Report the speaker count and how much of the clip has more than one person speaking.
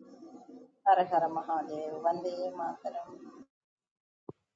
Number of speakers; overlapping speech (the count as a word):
one, no overlap